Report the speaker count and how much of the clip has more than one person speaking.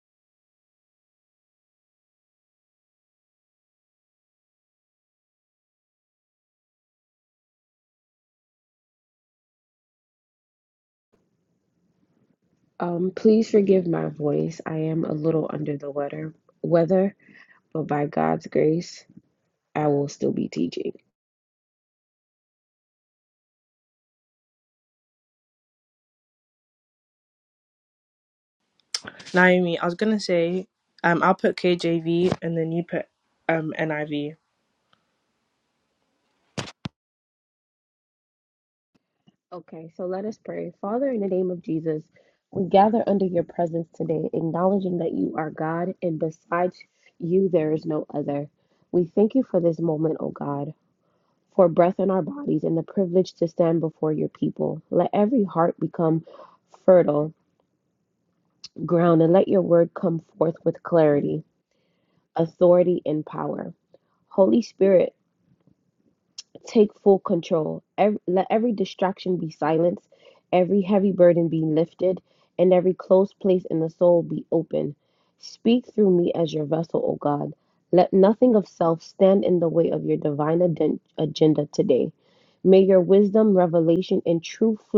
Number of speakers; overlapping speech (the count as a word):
two, no overlap